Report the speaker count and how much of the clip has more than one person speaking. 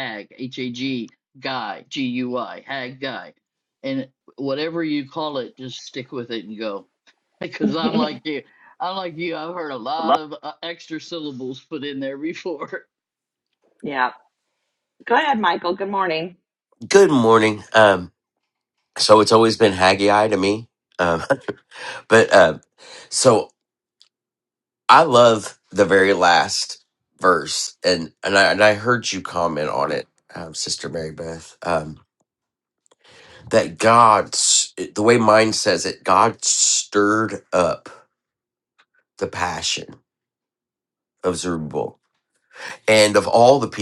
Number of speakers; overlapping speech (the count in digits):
3, under 1%